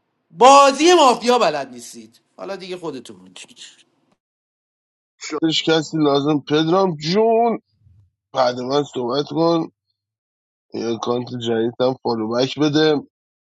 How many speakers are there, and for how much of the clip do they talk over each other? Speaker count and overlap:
2, no overlap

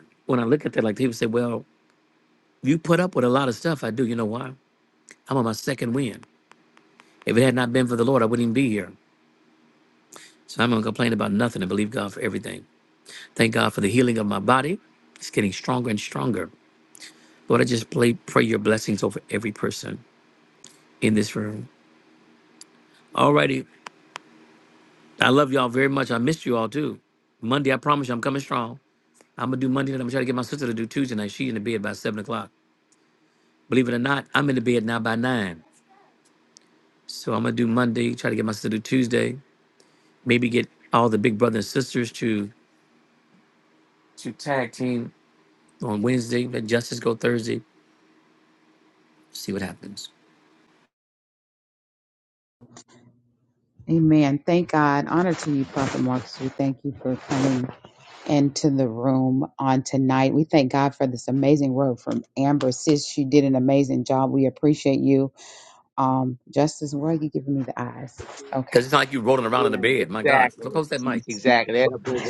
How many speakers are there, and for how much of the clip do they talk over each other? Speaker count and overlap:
3, about 2%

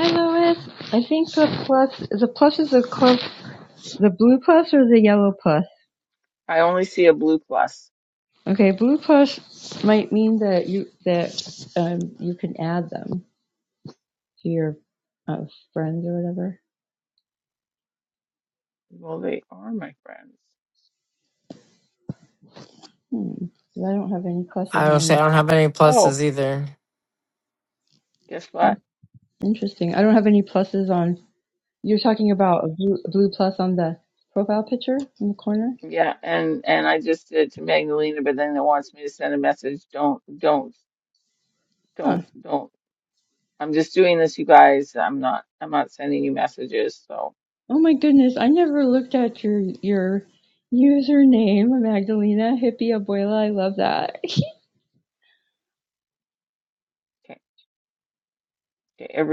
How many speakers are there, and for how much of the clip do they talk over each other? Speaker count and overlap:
3, about 2%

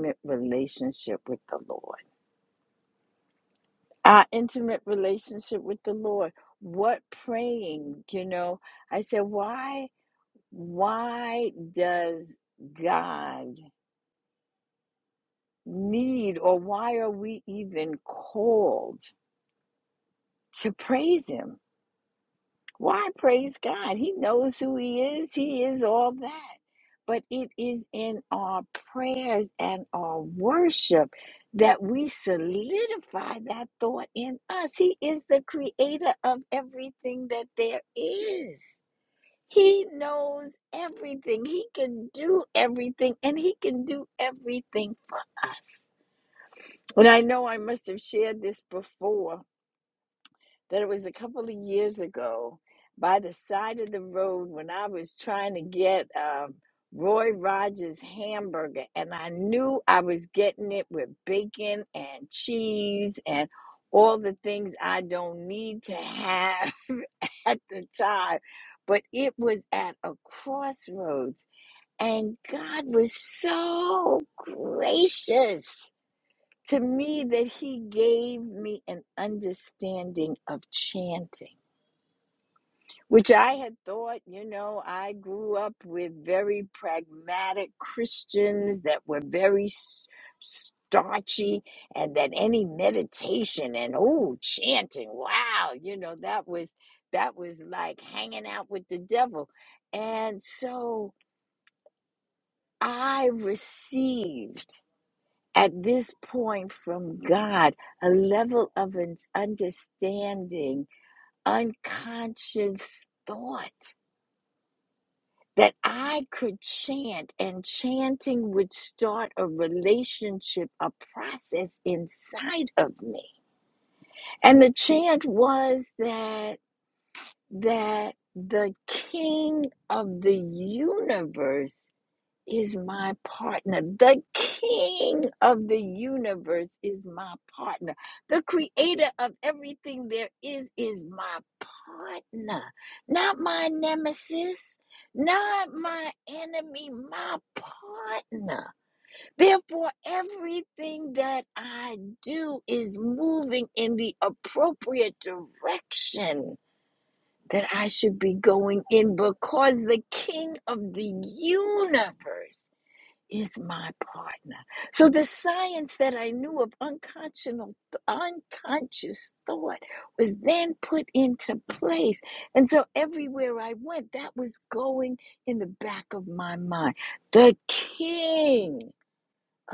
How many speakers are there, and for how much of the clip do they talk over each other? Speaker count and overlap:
1, no overlap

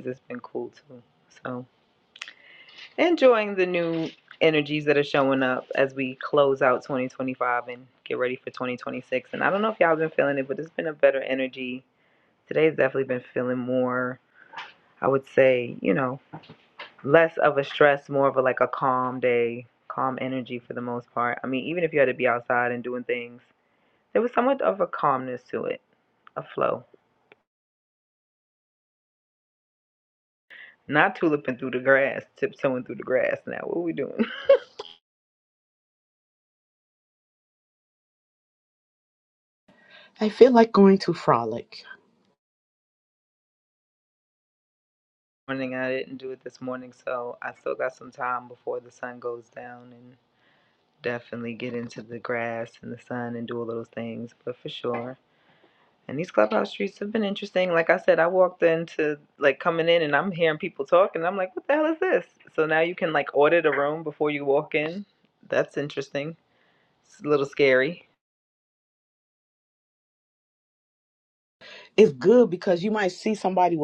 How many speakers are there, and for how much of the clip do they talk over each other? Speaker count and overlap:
2, no overlap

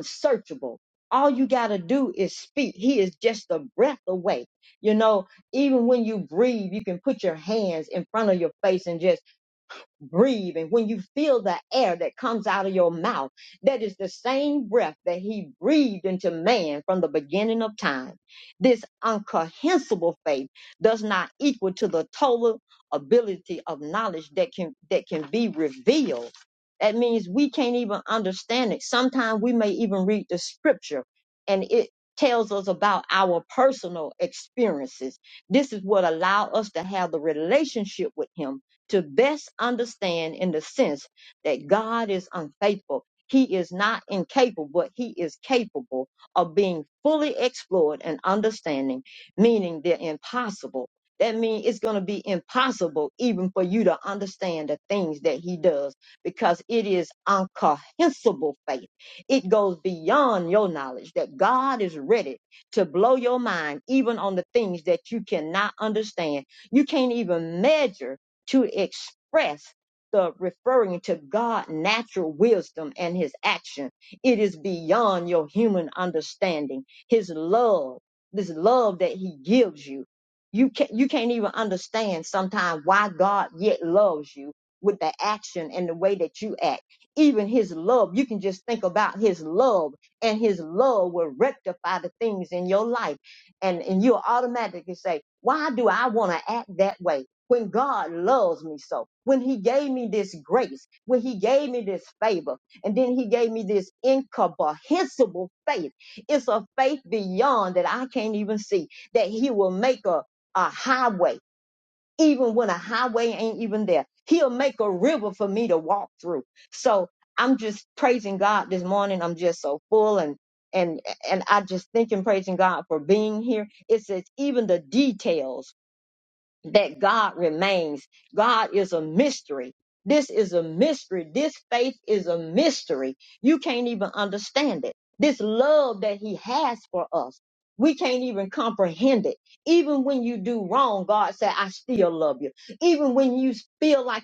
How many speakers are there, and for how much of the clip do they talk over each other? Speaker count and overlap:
1, no overlap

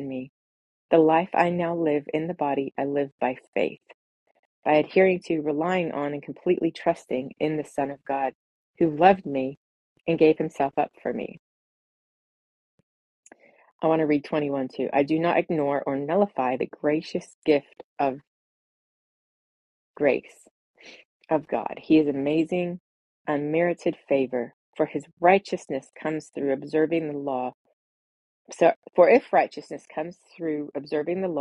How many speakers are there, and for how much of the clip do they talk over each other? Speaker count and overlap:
1, no overlap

